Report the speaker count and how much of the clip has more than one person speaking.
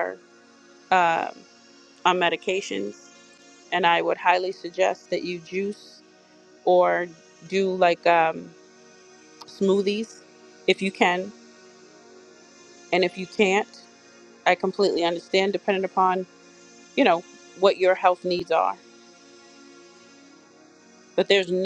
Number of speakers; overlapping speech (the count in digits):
1, no overlap